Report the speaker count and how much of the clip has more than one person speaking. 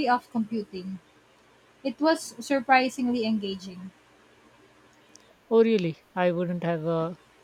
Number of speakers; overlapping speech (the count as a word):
two, no overlap